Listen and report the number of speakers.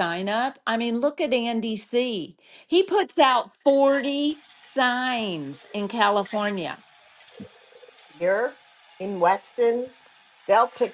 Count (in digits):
2